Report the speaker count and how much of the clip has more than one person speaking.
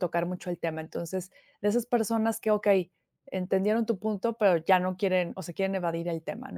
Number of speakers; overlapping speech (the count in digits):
1, no overlap